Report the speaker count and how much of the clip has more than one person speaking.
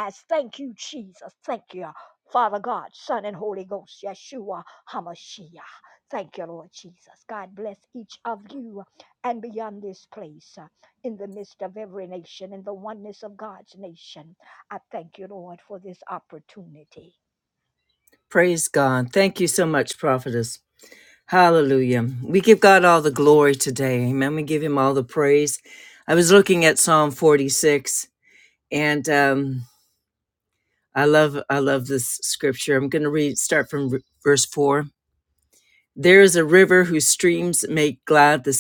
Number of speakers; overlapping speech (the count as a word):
two, no overlap